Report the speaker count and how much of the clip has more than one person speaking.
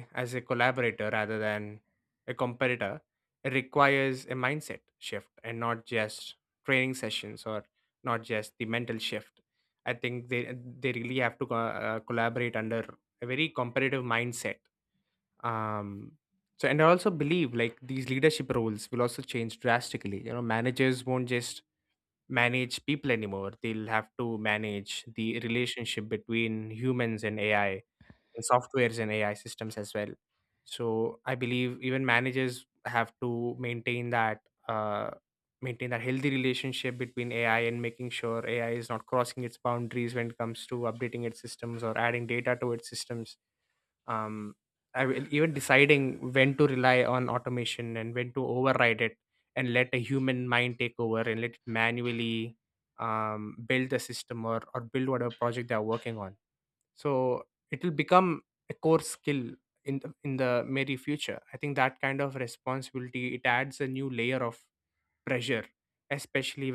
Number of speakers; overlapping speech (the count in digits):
1, no overlap